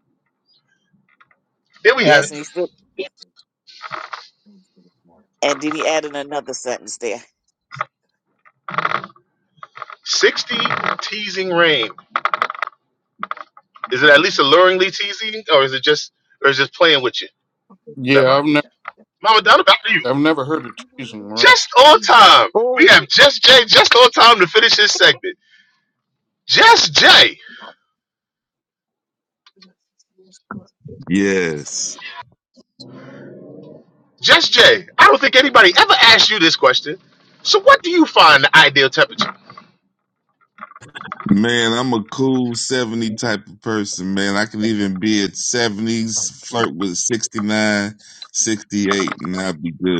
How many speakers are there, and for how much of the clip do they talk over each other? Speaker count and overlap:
four, about 2%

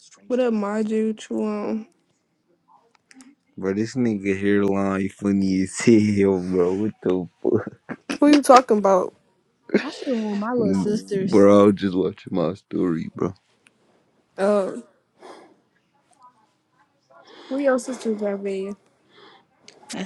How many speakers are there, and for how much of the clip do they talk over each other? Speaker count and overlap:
three, about 2%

